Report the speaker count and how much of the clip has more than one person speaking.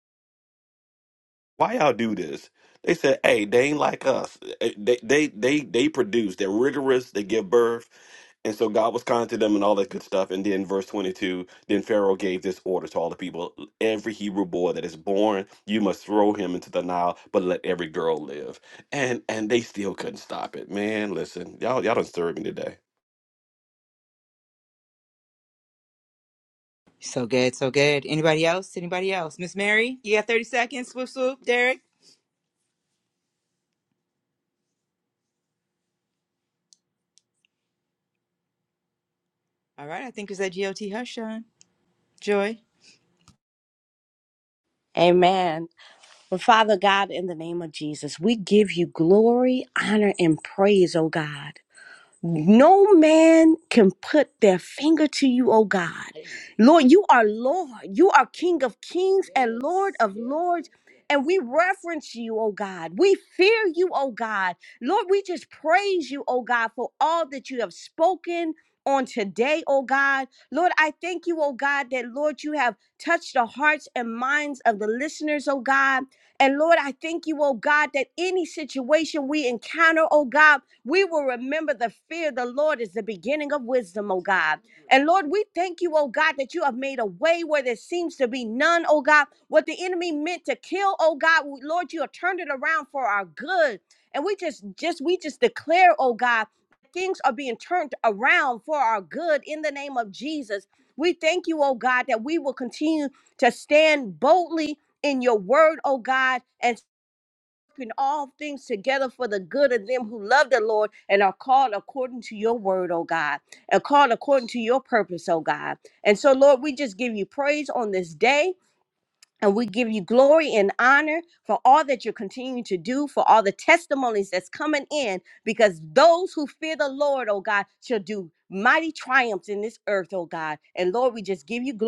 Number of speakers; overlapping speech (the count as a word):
three, no overlap